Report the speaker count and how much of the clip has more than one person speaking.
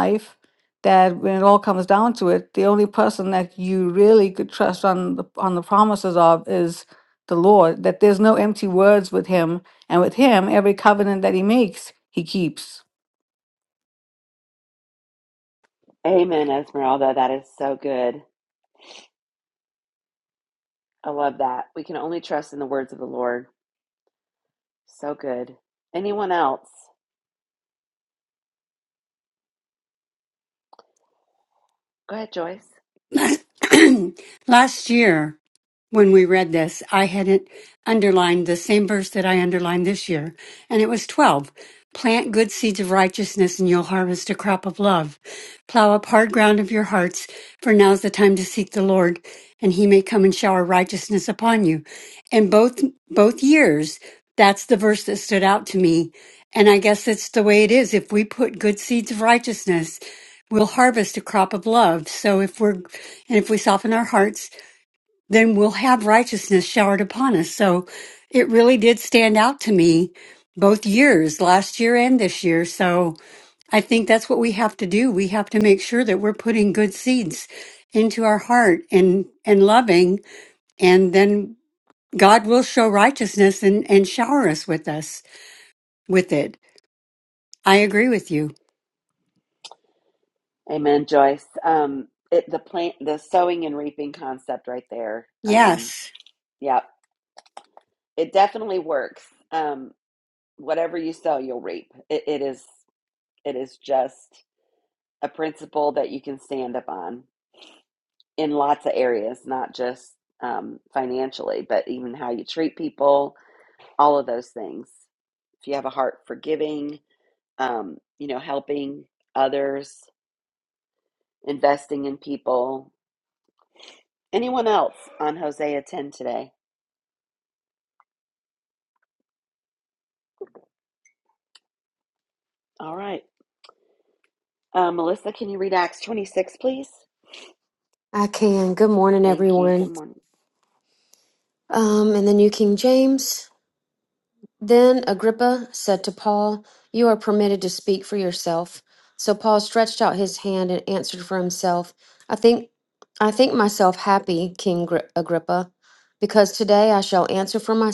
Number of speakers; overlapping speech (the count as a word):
four, about 1%